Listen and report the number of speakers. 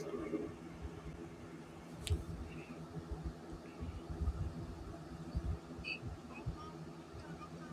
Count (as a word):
zero